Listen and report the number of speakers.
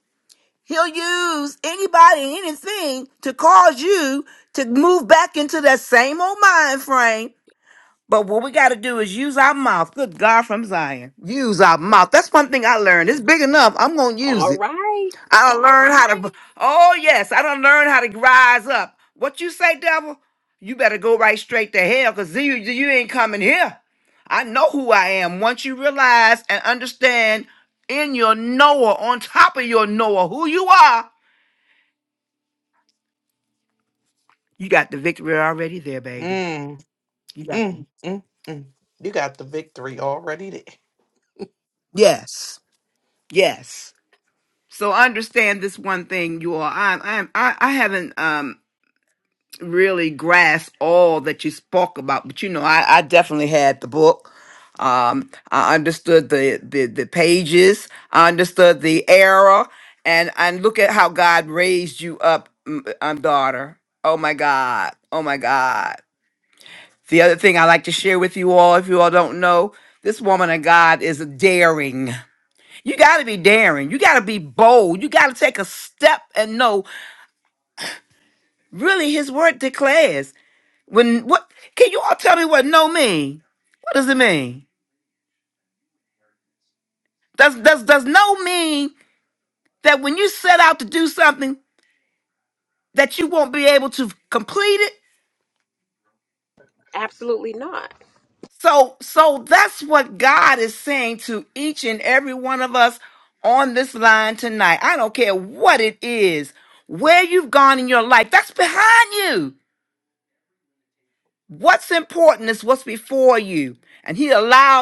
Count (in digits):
3